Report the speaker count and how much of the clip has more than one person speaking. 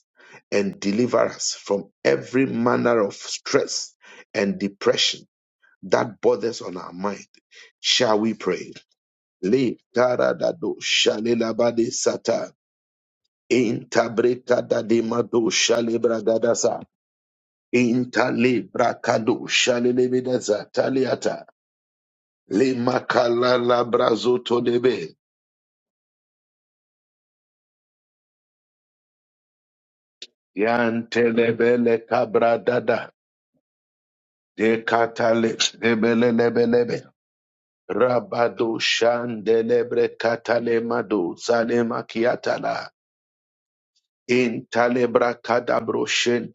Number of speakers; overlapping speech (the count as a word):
one, no overlap